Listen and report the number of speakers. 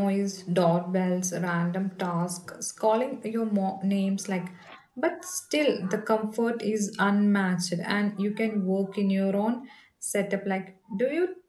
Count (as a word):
one